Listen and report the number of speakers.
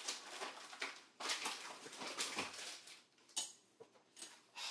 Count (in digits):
0